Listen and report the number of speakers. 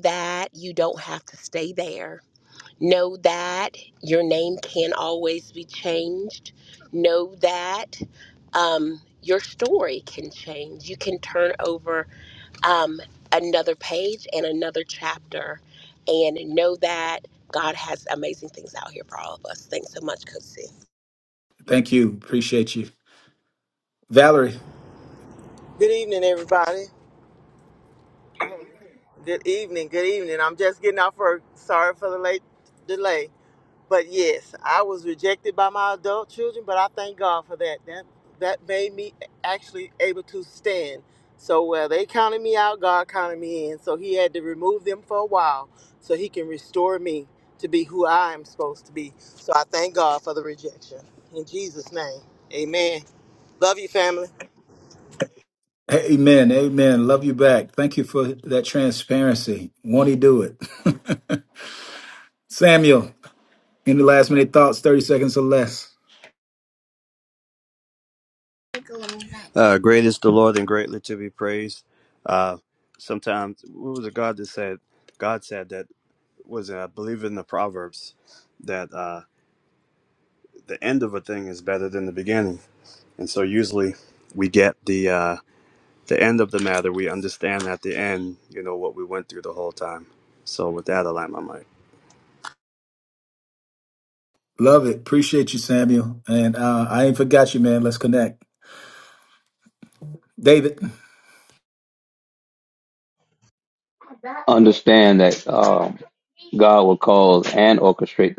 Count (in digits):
5